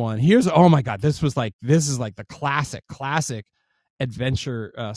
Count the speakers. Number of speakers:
one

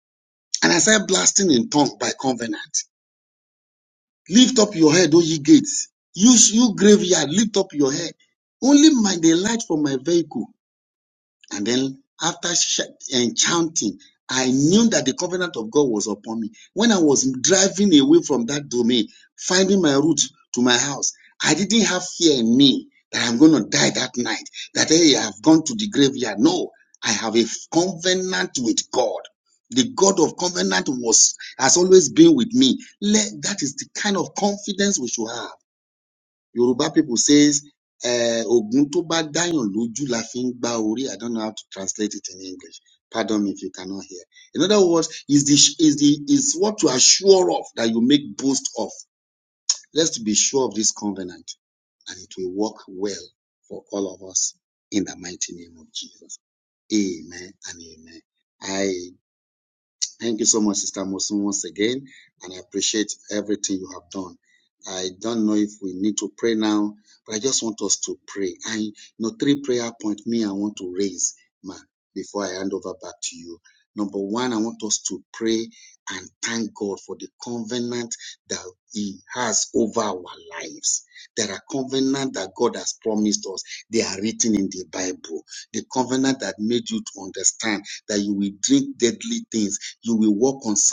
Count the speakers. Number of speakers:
one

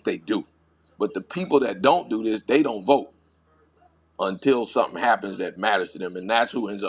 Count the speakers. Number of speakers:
one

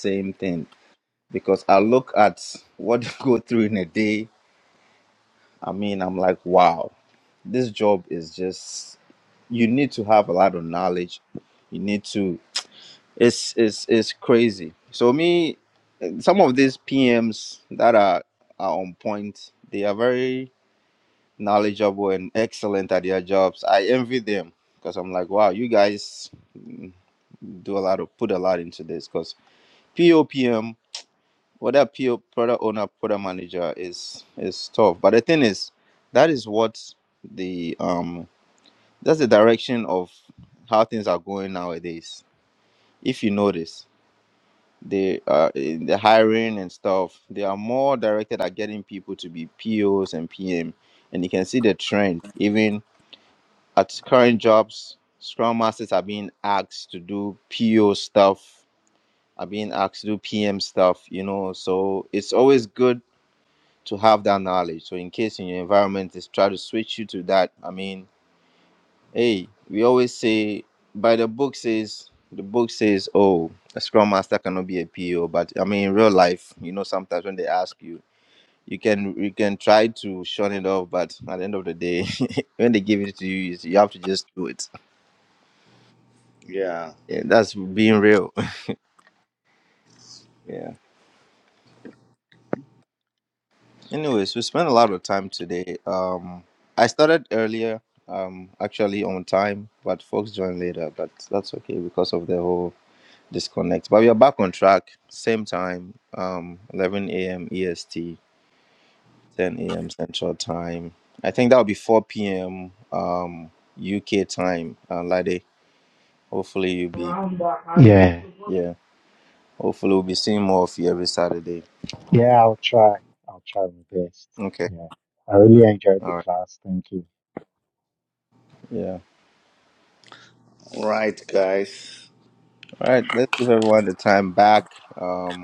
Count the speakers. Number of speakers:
three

